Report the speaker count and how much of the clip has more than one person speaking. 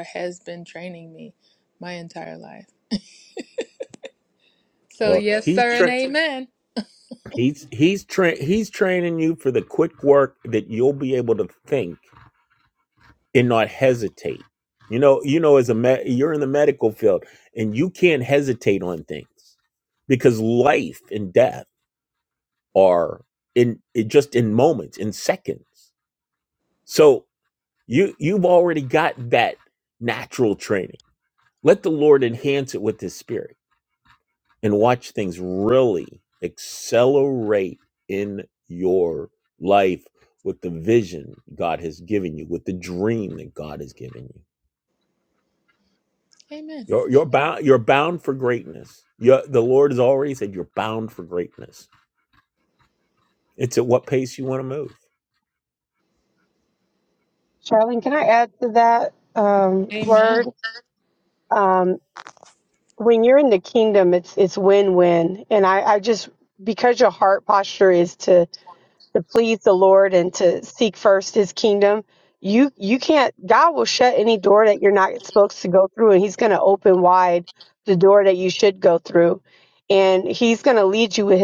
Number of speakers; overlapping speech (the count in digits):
3, about 2%